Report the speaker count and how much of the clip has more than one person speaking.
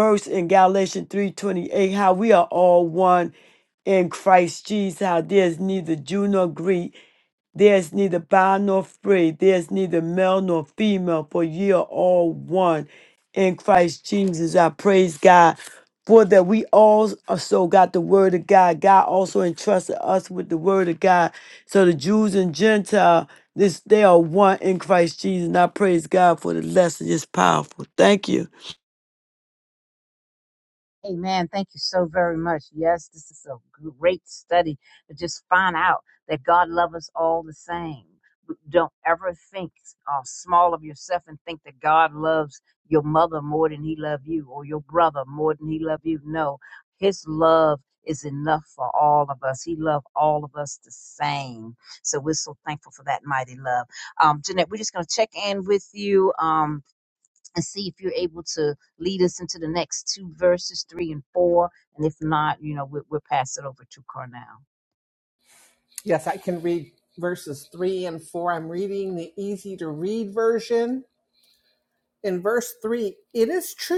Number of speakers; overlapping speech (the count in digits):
3, no overlap